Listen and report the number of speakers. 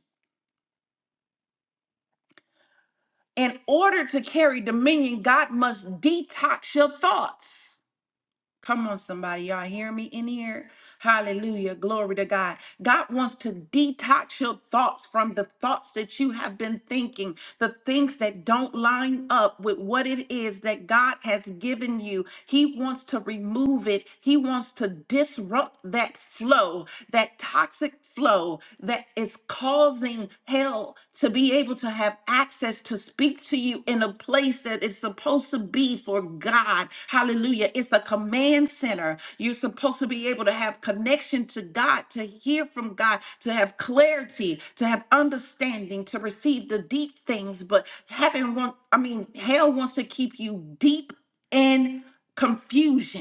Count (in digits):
1